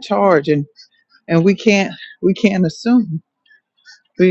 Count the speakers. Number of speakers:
one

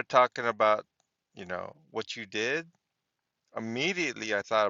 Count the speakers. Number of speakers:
one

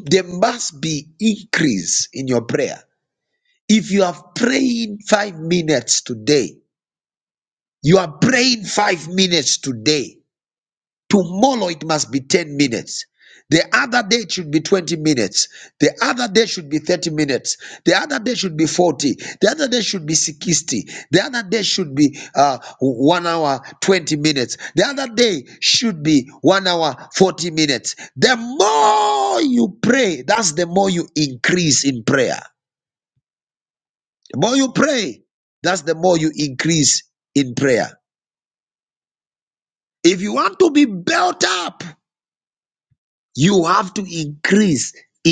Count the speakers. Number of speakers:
one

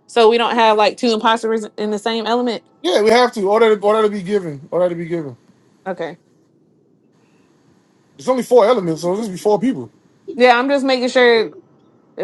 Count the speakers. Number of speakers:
two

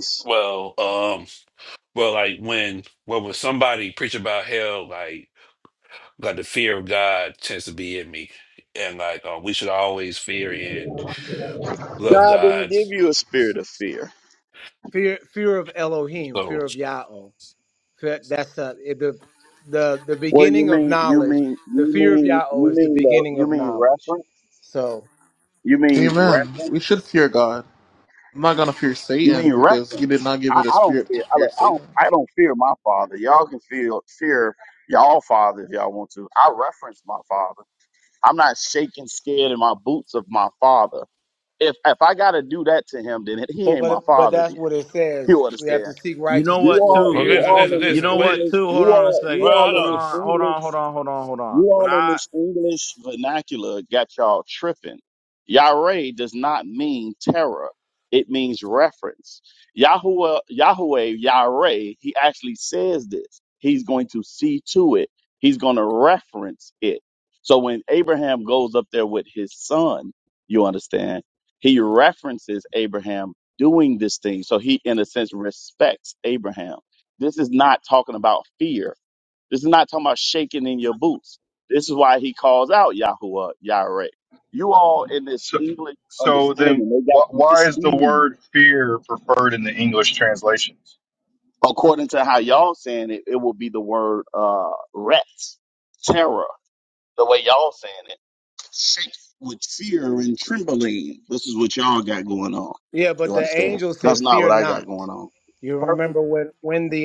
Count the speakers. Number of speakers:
six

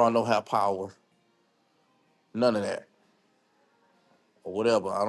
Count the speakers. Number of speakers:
one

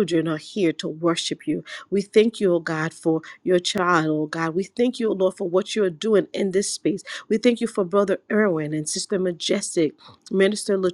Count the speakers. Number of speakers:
one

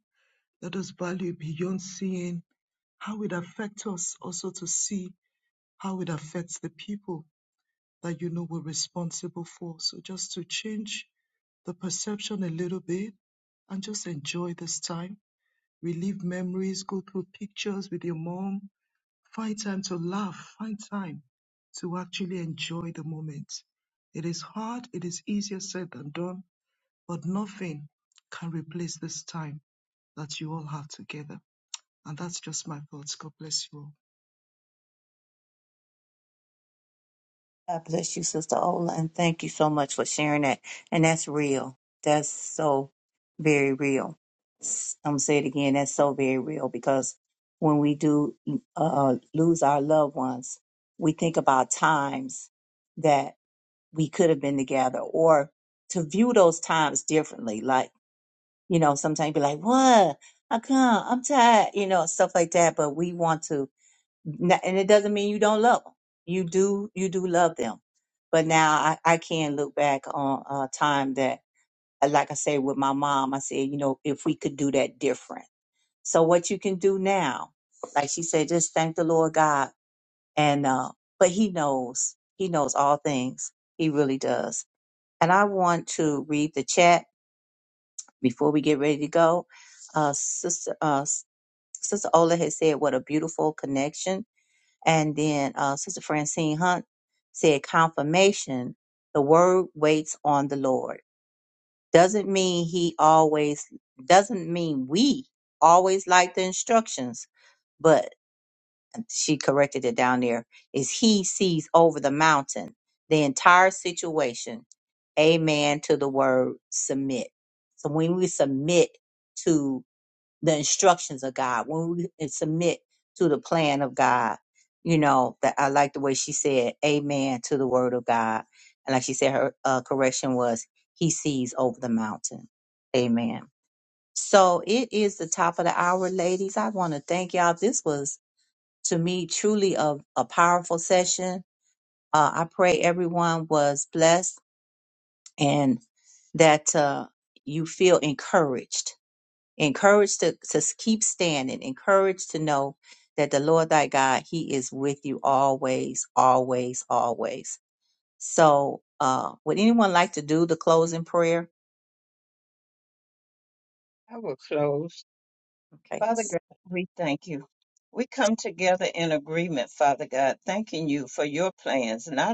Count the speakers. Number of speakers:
three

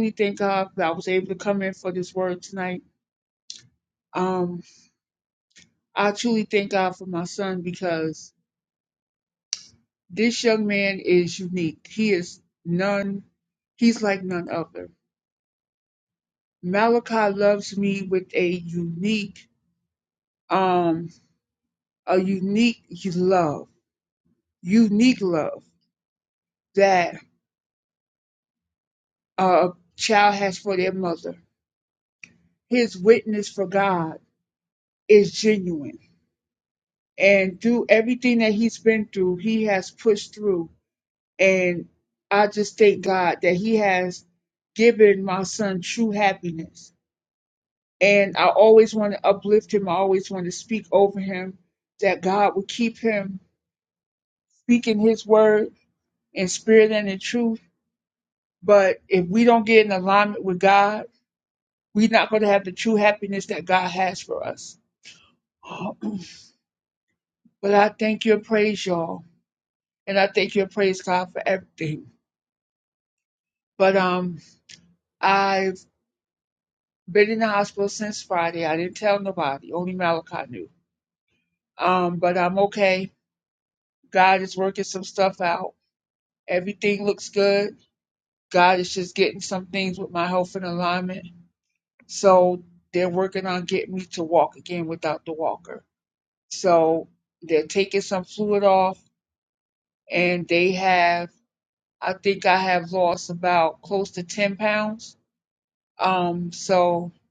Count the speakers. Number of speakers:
one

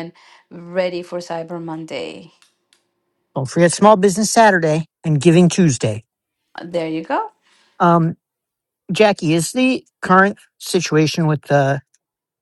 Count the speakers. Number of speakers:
two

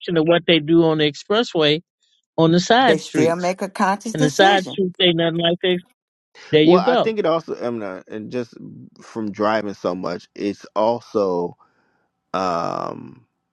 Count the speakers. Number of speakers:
three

